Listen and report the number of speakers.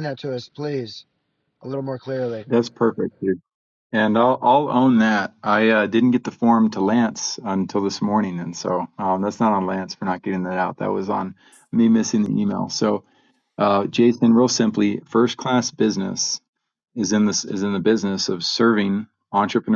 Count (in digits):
2